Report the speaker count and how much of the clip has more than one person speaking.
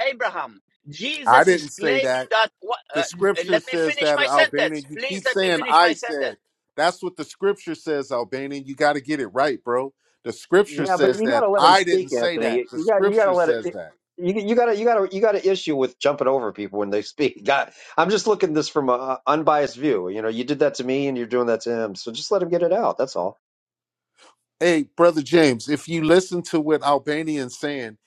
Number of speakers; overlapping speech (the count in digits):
3, about 25%